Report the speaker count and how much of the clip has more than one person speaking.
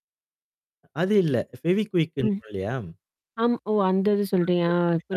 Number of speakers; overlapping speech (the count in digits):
2, about 11%